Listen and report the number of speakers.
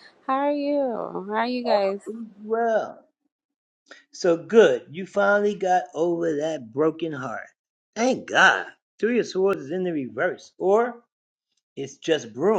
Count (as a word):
two